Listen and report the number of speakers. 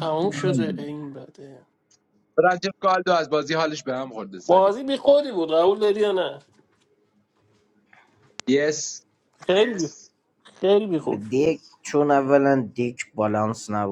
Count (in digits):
3